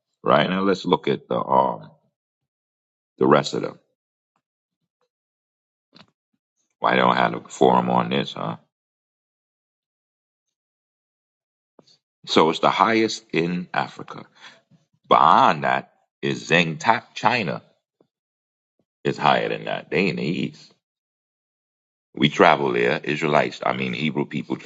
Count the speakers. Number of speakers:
one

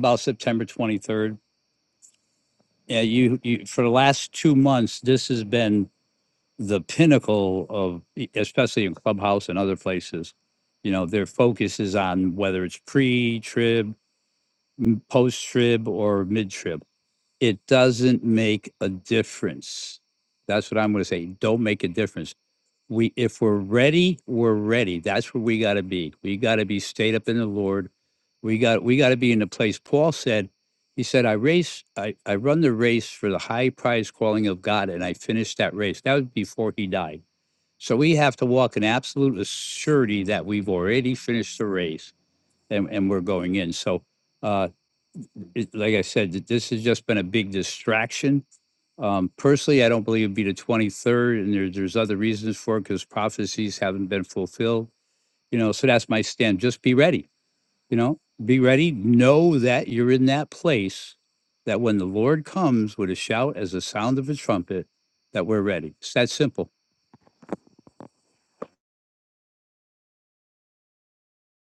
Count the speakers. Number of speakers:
one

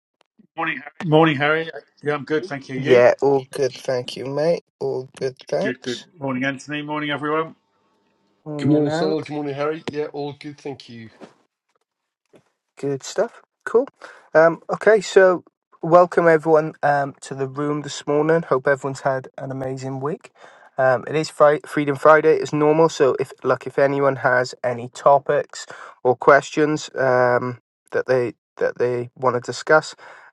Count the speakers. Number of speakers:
three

